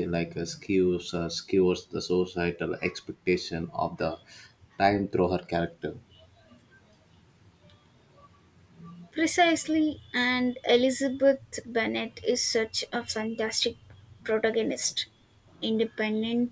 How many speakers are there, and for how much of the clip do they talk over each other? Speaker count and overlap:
2, no overlap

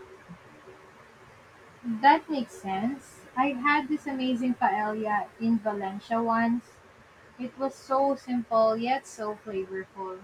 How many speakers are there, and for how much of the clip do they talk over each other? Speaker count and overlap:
1, no overlap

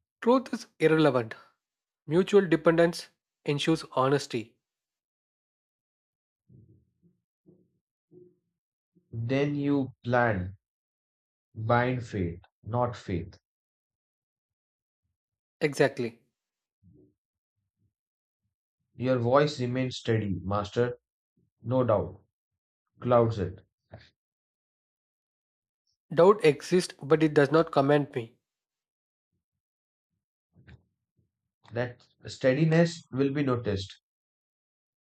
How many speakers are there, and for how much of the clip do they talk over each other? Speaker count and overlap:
2, no overlap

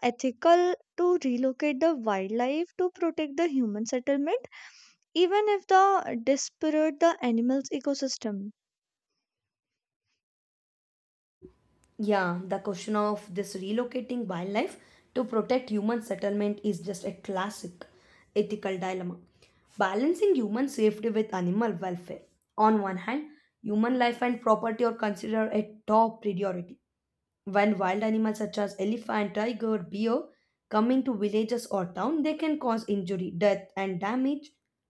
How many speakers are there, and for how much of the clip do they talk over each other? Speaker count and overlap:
2, no overlap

